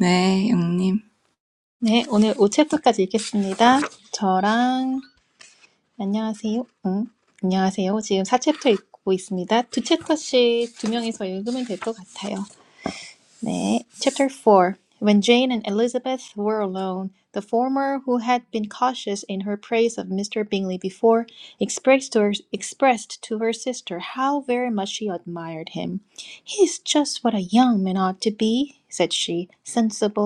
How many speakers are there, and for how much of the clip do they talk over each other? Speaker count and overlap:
2, no overlap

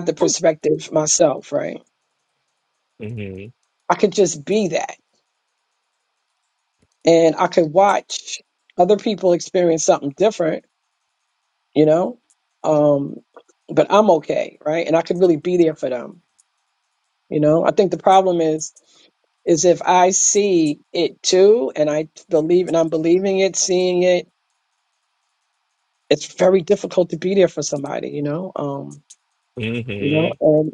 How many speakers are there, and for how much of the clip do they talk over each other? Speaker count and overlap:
2, about 1%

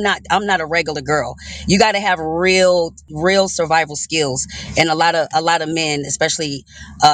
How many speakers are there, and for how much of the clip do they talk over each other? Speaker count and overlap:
1, no overlap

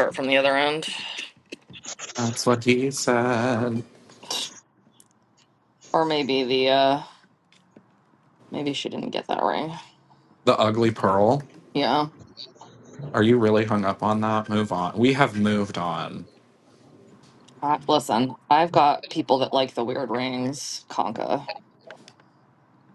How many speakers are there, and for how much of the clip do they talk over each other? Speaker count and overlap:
2, no overlap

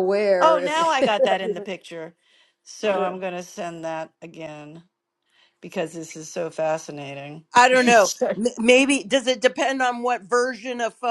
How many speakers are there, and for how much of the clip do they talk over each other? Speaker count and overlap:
3, about 6%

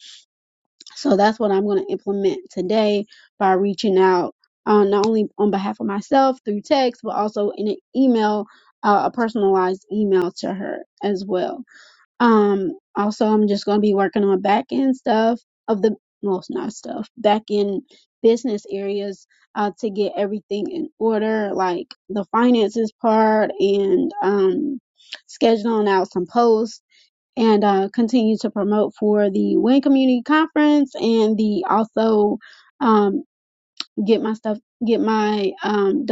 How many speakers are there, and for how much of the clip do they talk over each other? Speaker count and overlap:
1, no overlap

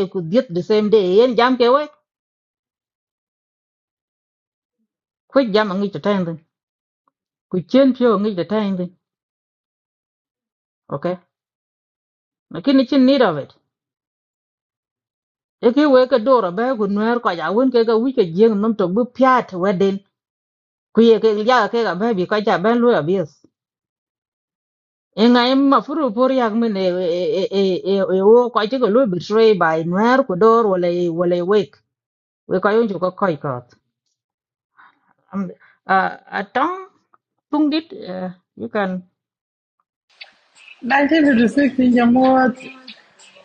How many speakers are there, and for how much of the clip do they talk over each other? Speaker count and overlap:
2, no overlap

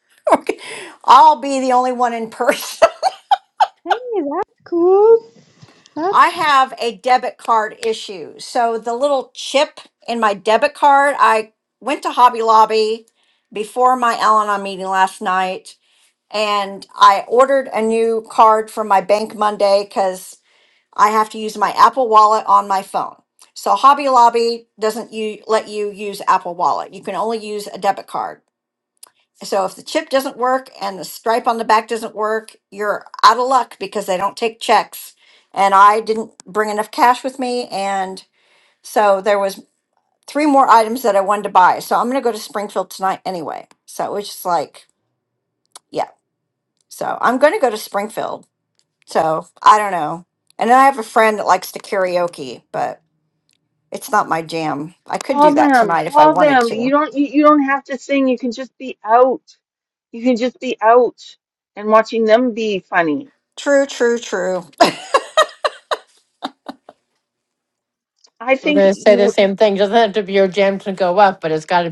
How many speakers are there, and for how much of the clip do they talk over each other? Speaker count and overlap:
4, about 4%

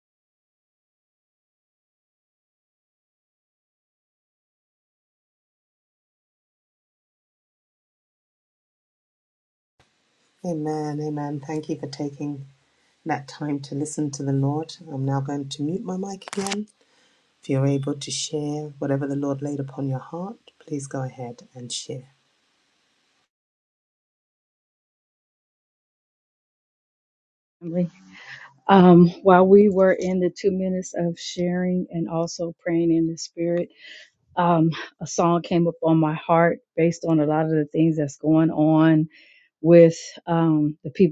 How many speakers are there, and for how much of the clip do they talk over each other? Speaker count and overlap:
2, no overlap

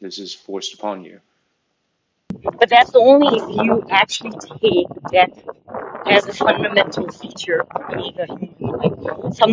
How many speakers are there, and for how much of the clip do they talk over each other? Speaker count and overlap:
2, no overlap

